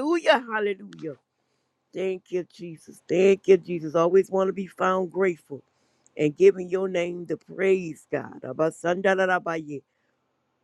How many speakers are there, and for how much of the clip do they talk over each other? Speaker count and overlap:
one, no overlap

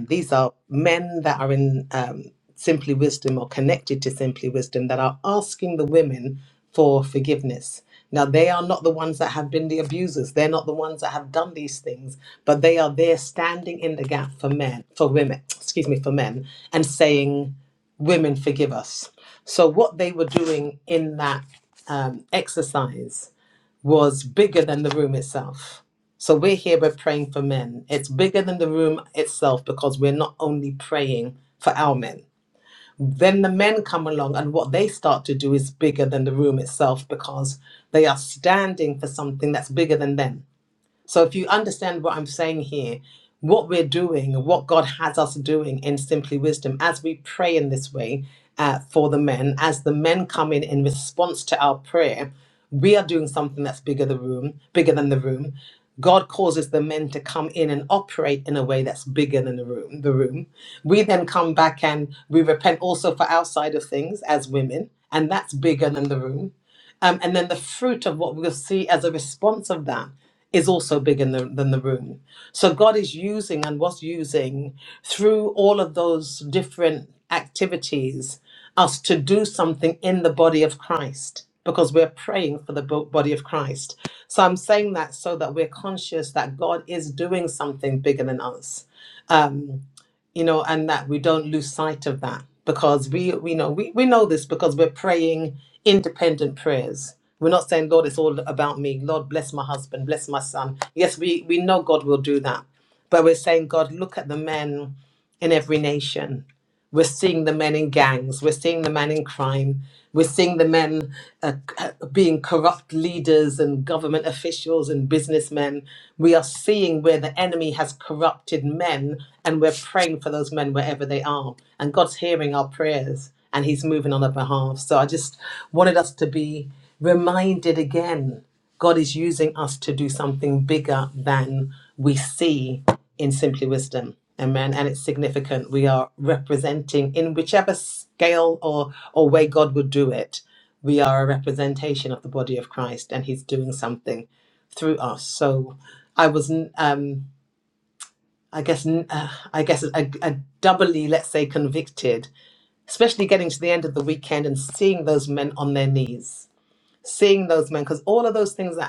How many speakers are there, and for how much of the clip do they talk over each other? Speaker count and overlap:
one, no overlap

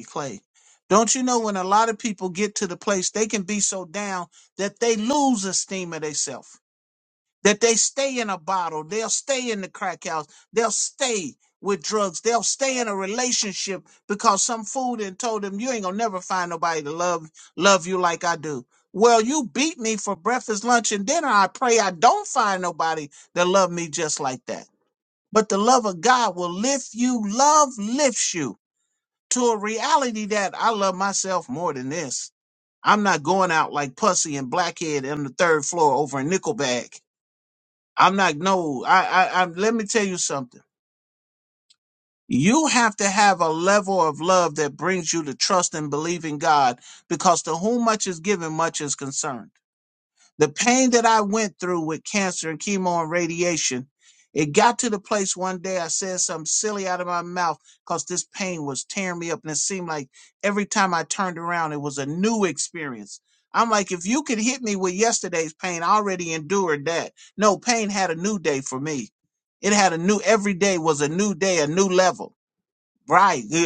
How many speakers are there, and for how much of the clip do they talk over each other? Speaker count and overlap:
one, no overlap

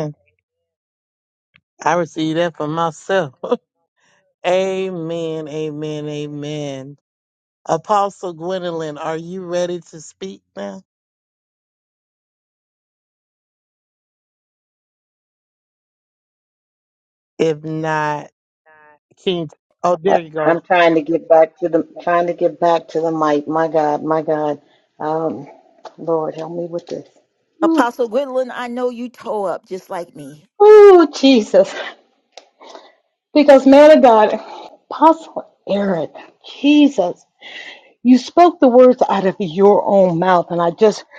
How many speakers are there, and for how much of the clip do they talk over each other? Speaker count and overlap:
three, about 2%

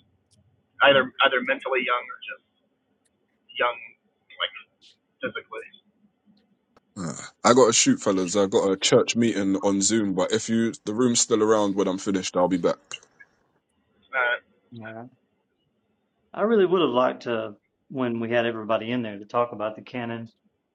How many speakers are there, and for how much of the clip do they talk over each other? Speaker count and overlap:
three, no overlap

